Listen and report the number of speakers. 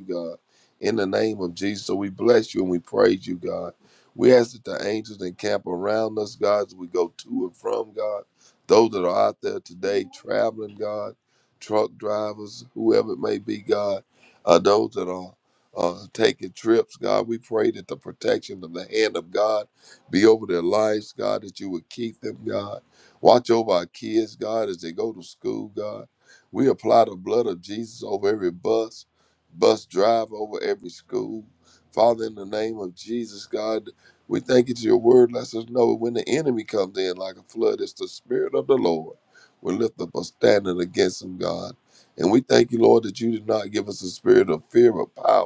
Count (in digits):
1